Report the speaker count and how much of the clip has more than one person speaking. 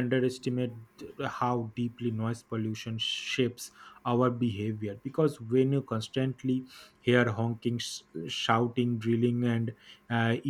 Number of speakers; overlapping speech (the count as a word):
one, no overlap